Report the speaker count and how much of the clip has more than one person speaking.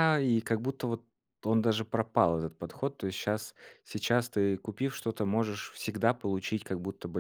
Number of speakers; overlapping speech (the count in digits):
1, no overlap